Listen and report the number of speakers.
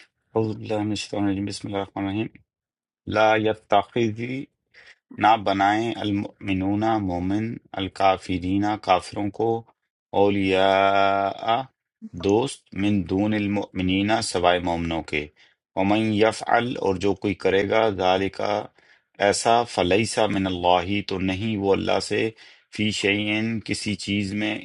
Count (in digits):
1